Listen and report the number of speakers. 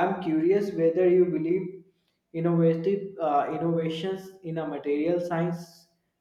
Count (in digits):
1